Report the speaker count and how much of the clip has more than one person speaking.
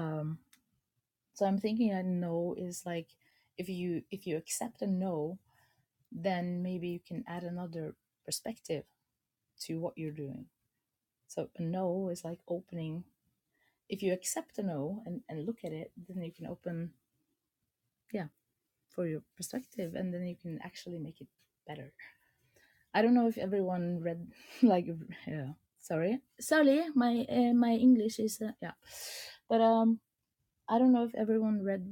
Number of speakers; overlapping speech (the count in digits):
1, no overlap